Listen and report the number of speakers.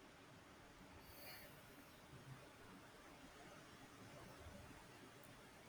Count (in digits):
0